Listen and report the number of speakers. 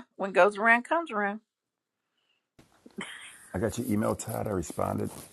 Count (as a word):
two